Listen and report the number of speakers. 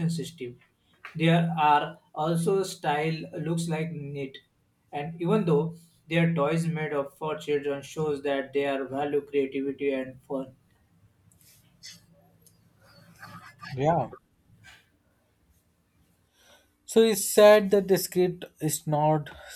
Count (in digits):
2